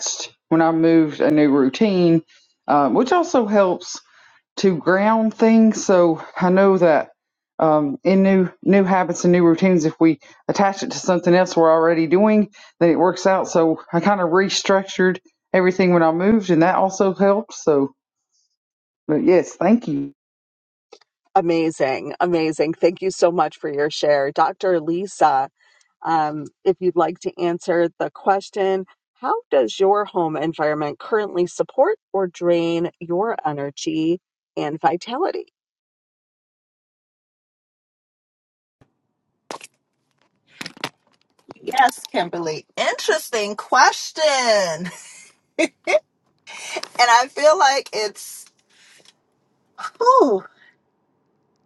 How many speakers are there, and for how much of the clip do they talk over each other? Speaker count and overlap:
three, no overlap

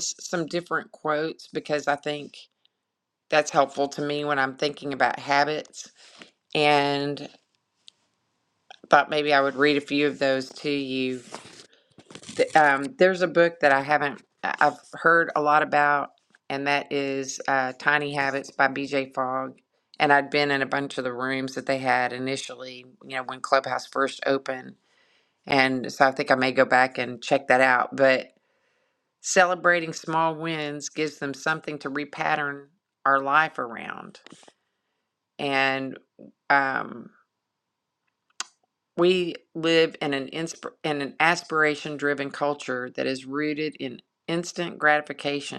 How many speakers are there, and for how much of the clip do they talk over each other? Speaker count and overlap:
one, no overlap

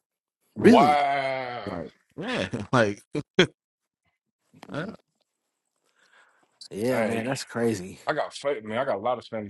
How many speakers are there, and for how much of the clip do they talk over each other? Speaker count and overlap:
three, about 8%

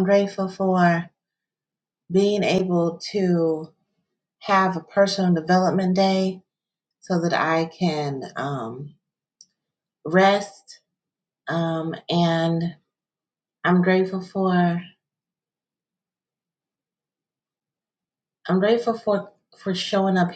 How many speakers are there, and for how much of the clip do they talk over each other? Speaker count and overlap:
one, no overlap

